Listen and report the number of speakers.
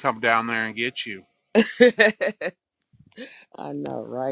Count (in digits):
2